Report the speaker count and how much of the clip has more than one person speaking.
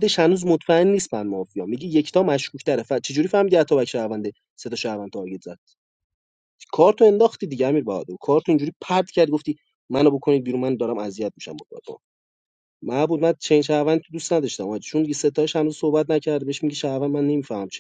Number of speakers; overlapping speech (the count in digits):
1, no overlap